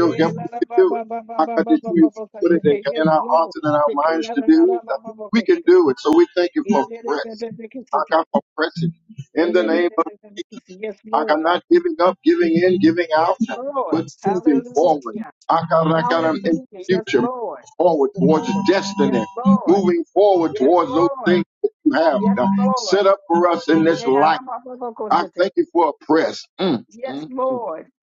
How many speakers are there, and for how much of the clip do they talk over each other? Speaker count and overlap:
2, about 40%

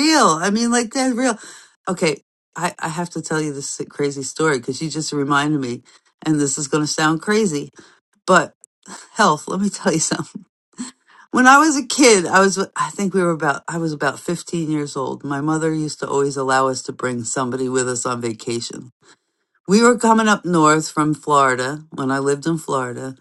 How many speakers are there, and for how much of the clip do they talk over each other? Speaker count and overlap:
1, no overlap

